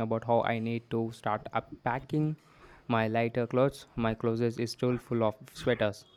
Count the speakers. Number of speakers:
1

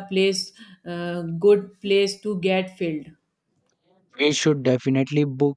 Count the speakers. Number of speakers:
2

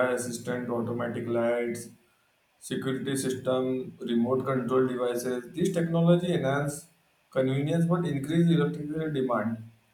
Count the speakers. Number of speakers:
1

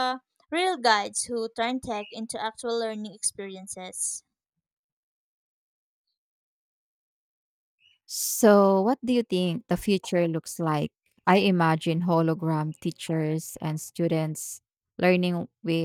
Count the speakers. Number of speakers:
2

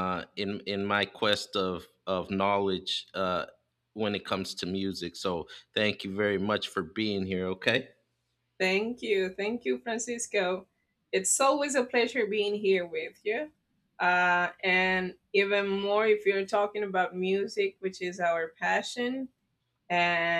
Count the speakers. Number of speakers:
2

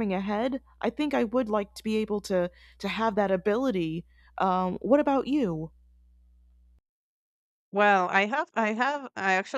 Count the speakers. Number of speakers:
2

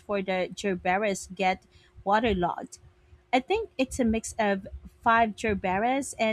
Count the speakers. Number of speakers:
1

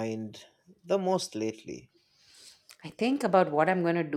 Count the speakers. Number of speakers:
2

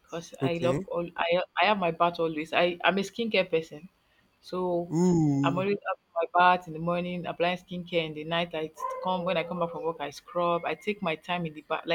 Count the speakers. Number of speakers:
2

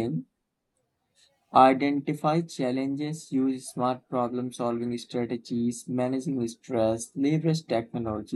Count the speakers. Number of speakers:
1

